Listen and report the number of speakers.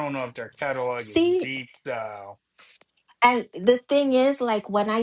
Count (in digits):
2